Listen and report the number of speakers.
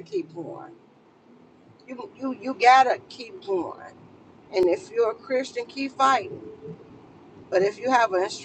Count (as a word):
one